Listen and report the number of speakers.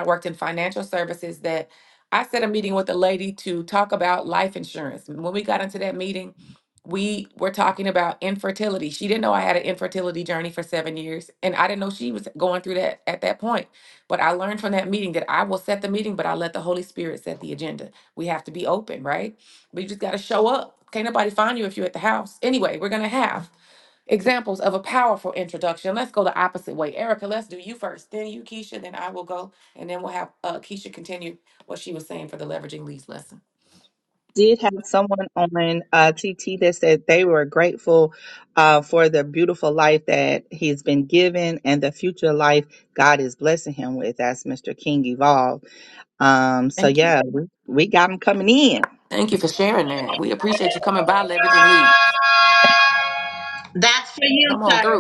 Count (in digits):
3